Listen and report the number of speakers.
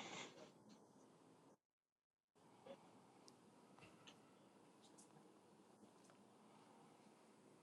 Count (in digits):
0